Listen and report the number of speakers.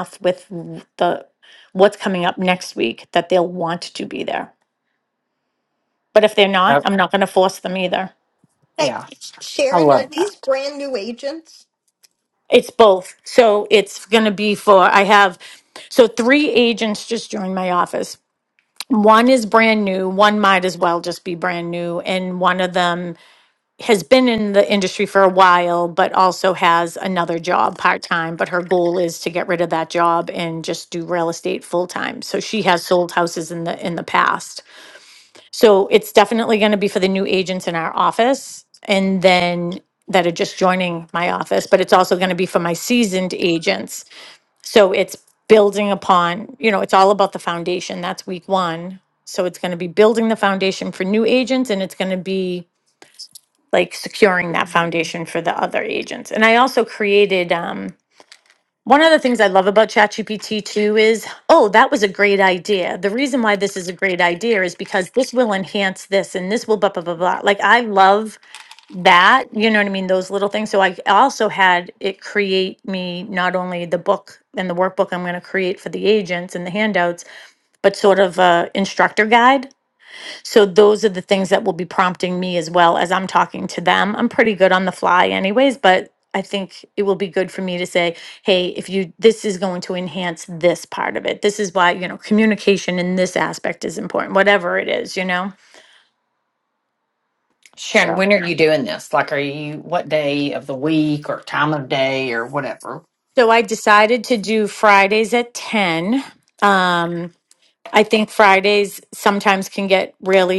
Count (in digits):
3